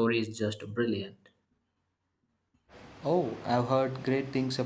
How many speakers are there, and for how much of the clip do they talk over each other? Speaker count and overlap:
2, no overlap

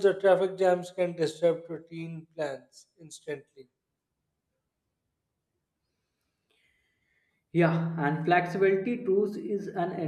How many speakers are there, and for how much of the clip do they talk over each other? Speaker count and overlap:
2, no overlap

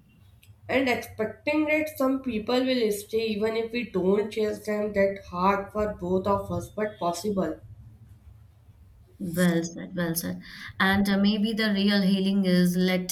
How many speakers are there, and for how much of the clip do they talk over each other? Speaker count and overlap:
2, no overlap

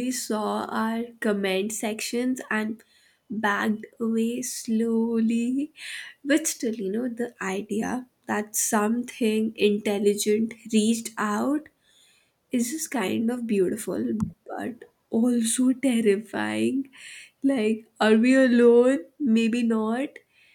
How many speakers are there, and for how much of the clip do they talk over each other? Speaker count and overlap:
1, no overlap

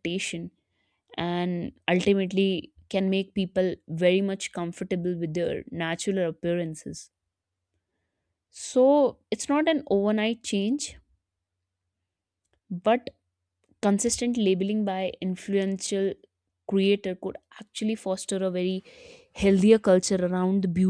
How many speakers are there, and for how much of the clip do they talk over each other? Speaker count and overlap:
1, no overlap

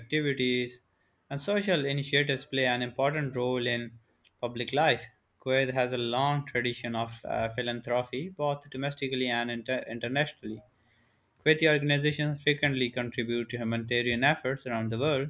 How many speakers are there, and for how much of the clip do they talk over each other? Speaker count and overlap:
1, no overlap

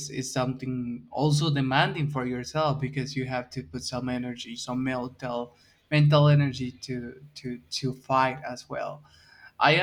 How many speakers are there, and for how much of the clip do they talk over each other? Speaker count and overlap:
1, no overlap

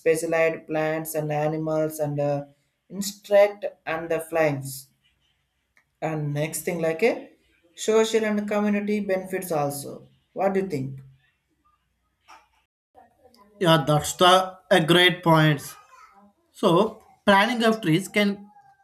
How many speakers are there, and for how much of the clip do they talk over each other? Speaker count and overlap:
2, no overlap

